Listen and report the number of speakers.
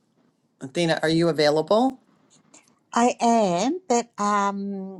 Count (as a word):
two